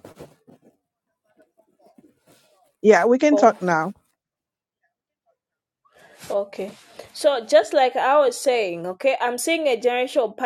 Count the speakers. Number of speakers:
2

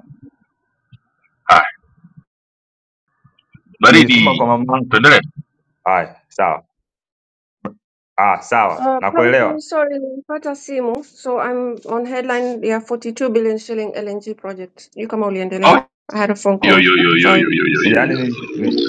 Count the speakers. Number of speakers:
3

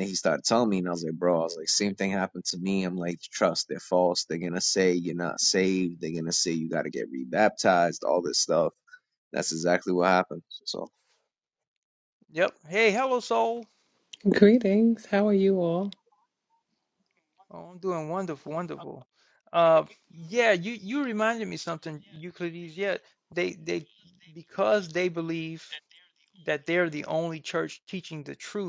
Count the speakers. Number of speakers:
3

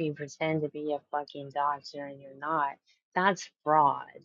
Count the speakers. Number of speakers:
1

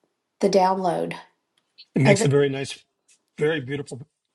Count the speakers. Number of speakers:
2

